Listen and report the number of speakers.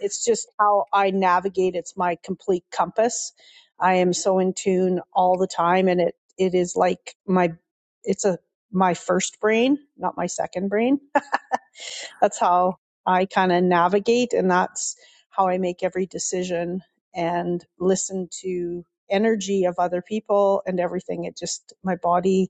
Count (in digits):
1